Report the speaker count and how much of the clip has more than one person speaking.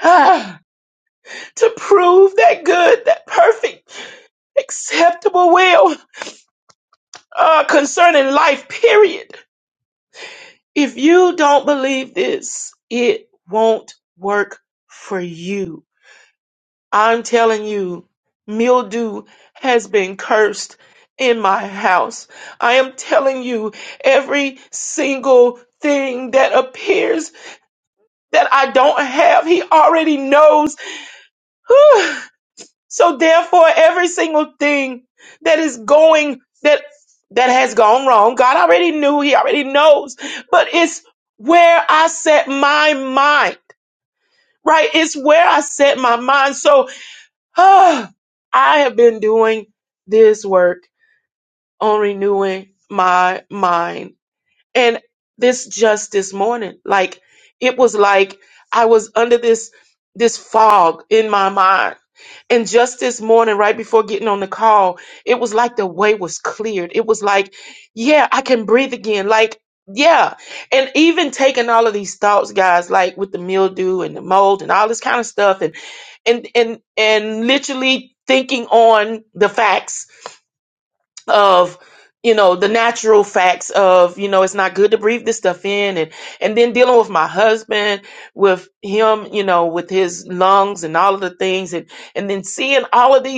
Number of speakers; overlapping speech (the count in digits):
1, no overlap